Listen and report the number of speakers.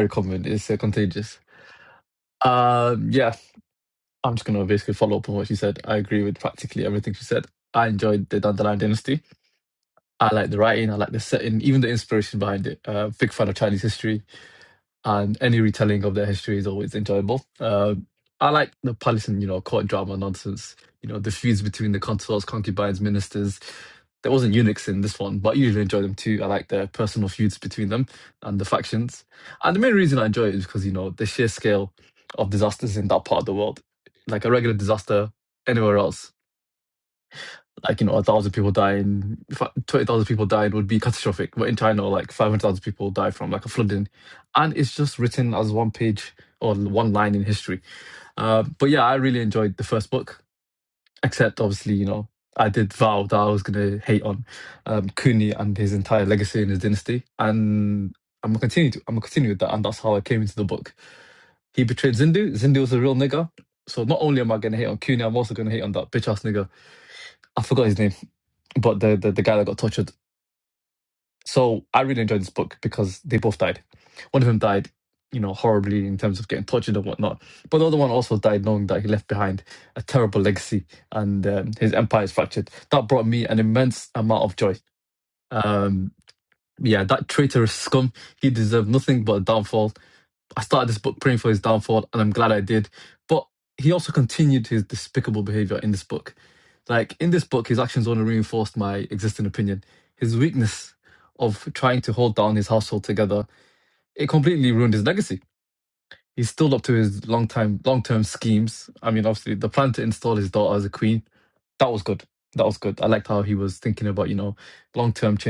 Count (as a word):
one